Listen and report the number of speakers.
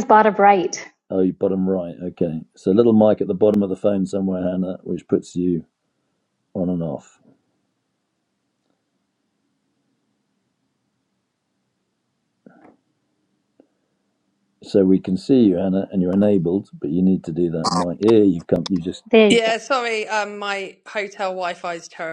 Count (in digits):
3